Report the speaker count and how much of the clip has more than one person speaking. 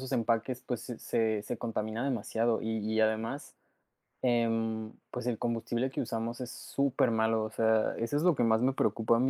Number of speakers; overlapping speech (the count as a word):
one, no overlap